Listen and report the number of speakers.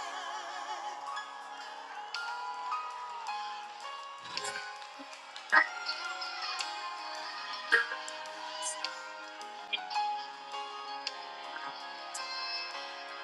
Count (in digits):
0